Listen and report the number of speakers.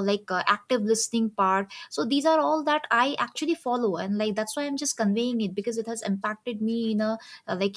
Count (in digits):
1